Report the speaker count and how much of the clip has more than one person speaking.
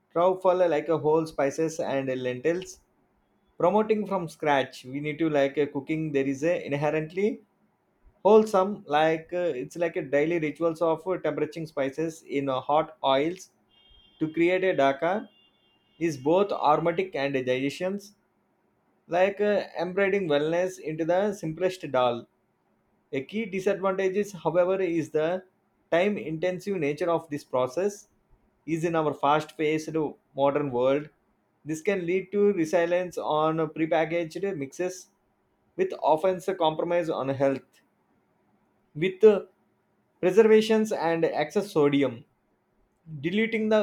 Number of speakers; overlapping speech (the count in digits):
1, no overlap